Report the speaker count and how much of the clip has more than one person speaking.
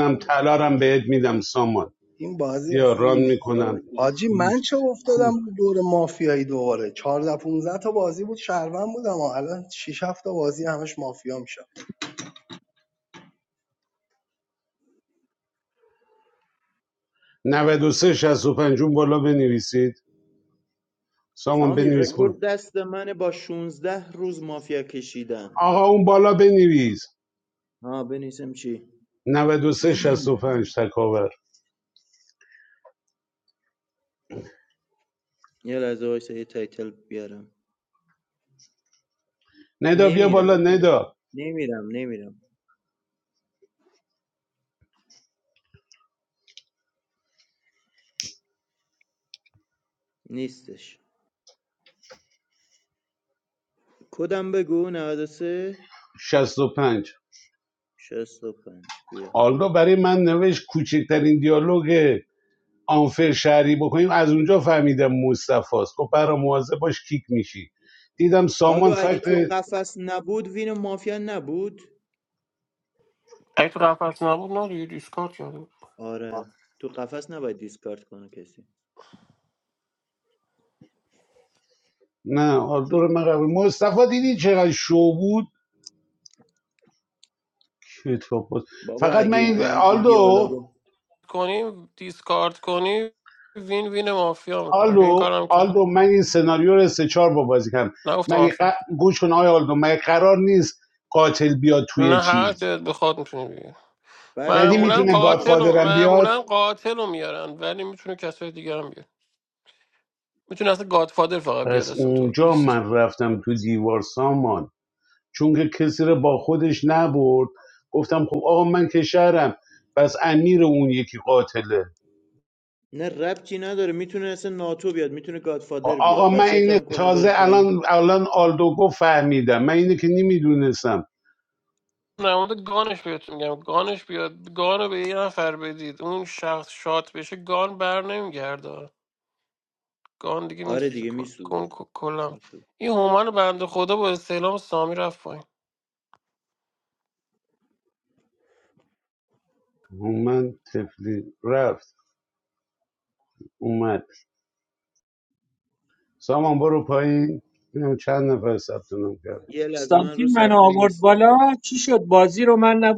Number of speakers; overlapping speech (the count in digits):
5, about 9%